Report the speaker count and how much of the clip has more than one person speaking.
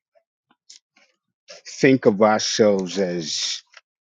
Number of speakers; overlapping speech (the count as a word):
one, no overlap